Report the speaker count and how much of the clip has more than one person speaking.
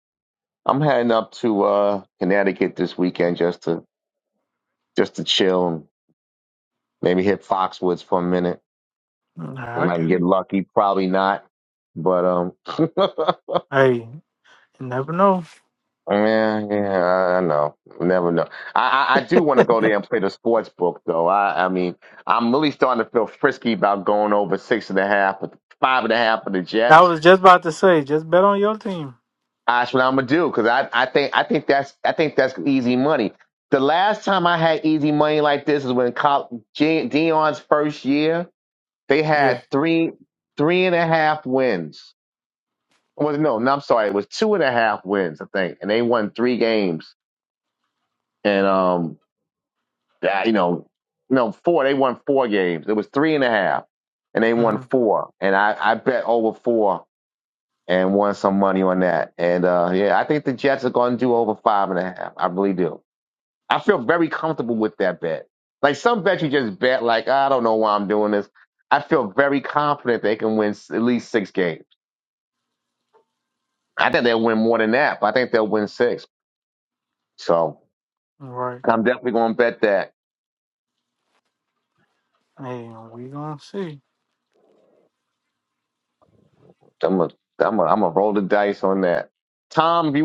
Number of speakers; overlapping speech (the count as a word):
two, about 1%